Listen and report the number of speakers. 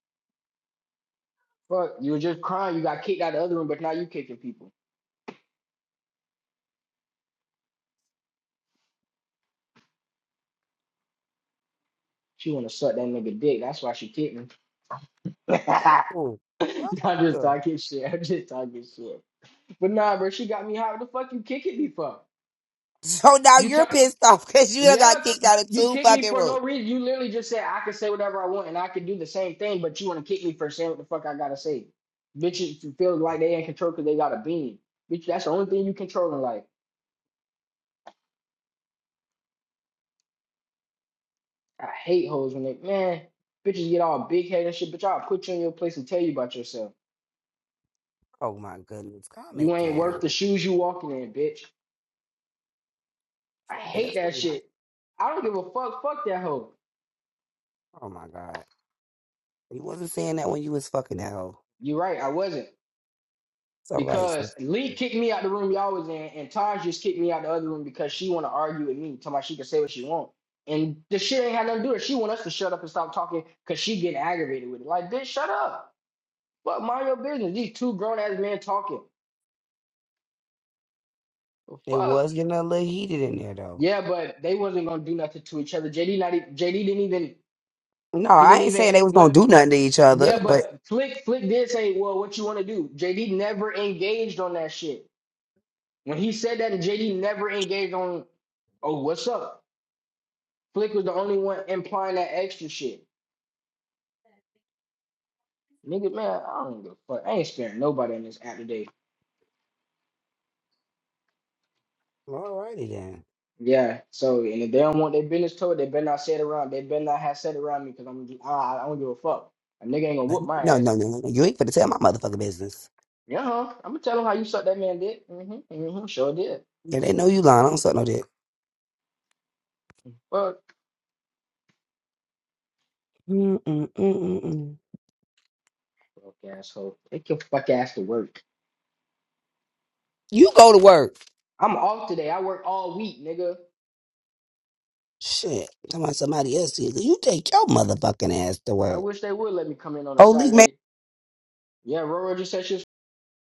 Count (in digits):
2